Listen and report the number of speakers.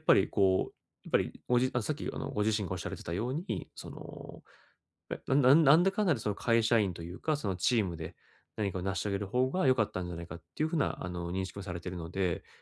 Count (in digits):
1